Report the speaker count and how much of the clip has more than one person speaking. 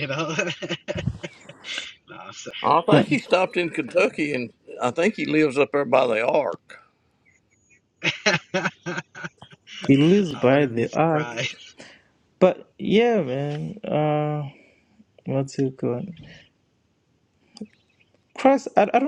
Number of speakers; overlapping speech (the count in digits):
3, about 8%